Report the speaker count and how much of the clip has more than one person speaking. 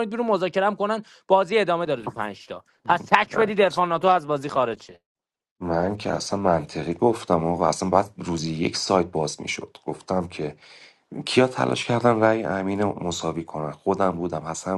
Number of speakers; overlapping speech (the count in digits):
2, no overlap